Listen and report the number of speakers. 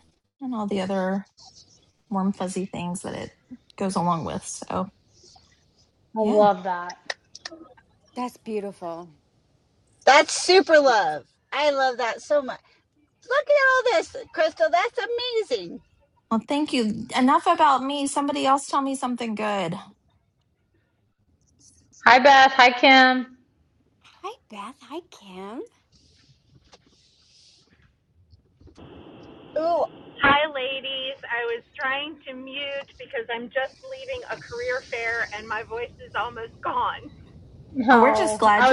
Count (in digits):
5